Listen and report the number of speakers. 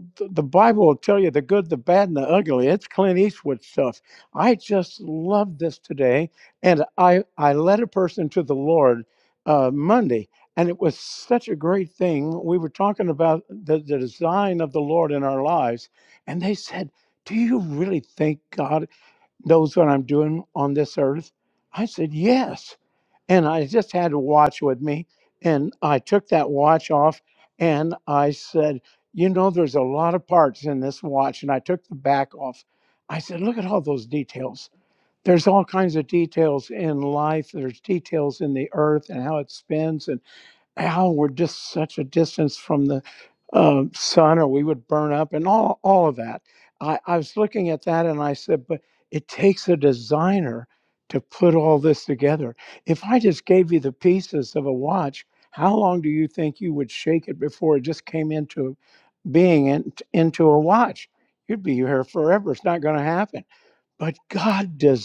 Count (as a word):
one